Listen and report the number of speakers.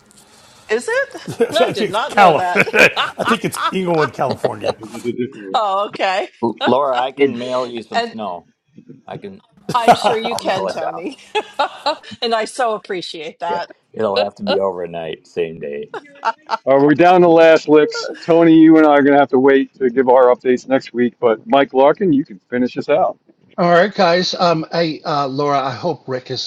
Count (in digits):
5